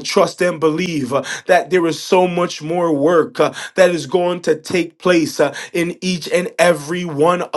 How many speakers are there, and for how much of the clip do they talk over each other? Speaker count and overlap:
1, no overlap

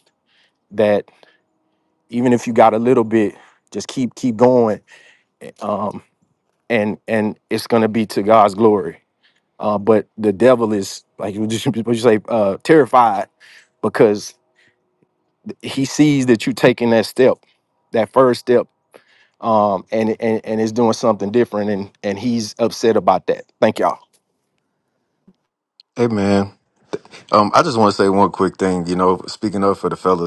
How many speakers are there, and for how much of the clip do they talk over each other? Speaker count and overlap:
2, no overlap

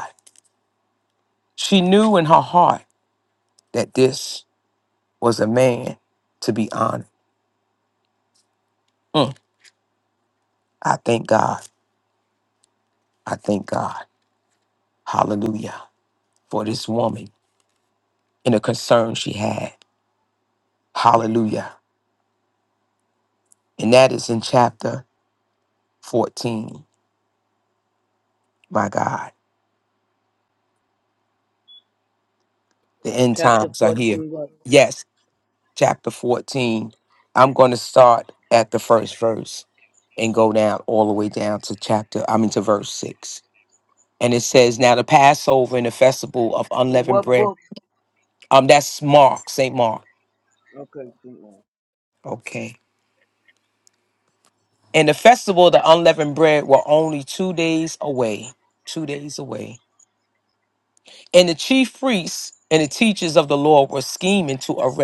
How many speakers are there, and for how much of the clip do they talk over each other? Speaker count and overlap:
2, about 2%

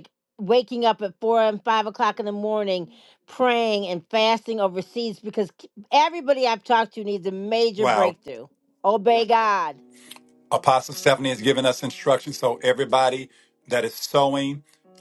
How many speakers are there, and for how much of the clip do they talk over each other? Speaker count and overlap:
2, about 2%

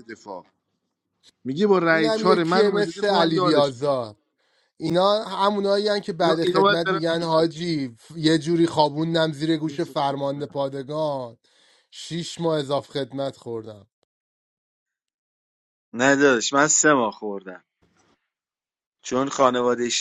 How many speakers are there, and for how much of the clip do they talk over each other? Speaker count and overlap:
3, about 17%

